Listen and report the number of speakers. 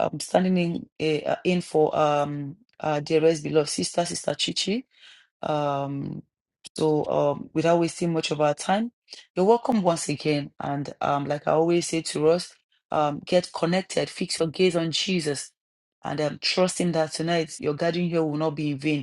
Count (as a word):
one